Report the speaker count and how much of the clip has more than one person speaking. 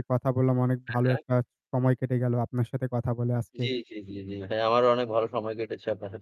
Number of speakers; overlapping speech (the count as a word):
two, about 7%